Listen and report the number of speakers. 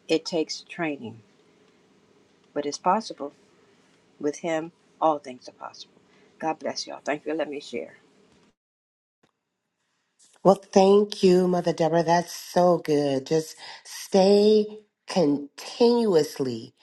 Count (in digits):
2